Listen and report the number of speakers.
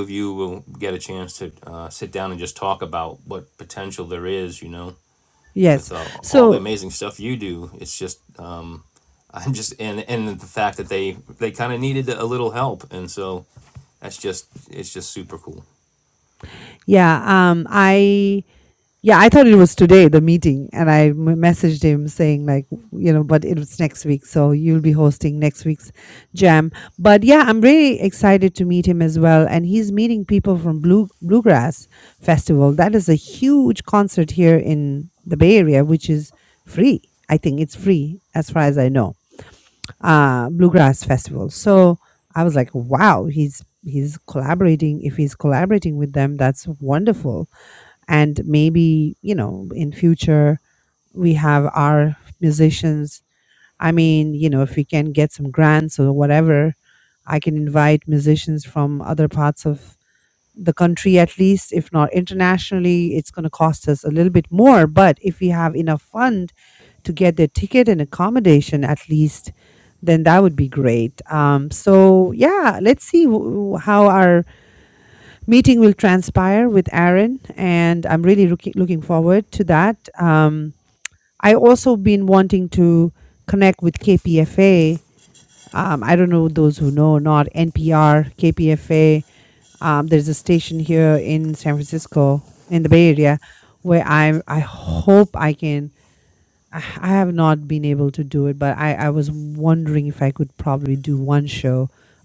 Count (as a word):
two